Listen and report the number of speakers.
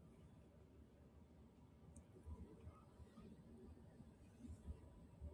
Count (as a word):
zero